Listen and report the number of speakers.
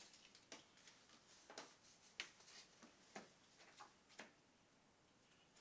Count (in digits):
0